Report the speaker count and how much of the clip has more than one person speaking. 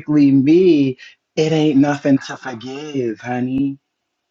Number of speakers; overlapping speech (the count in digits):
1, no overlap